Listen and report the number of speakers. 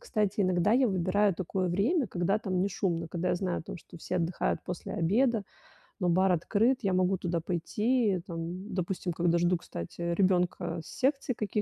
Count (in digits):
1